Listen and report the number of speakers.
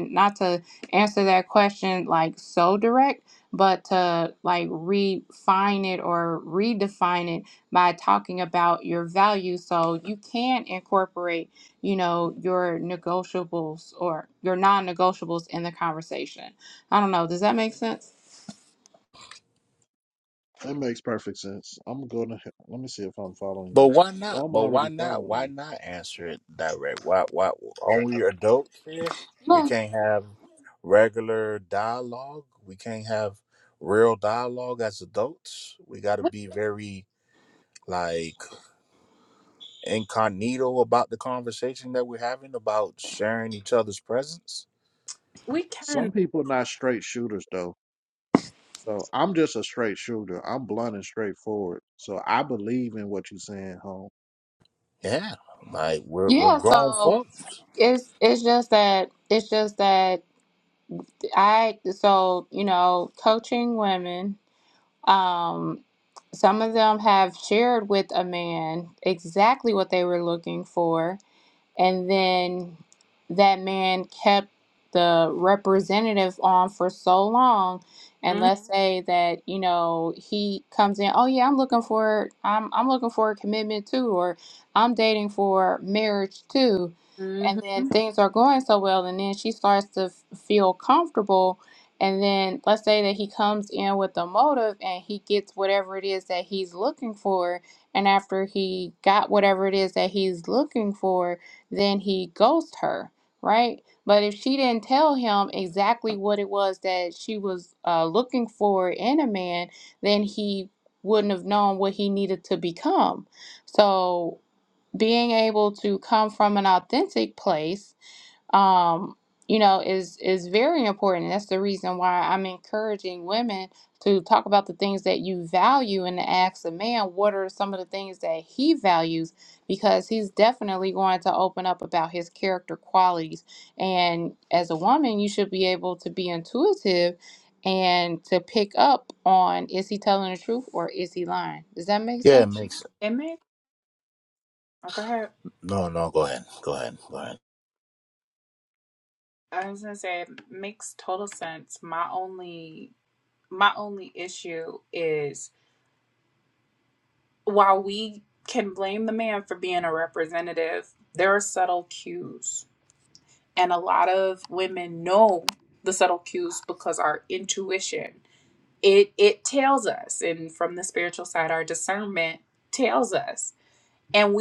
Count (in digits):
4